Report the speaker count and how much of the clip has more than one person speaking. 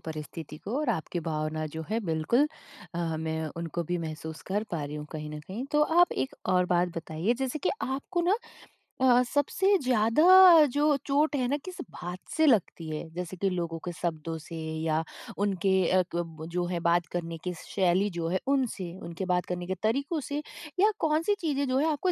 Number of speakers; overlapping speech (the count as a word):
one, no overlap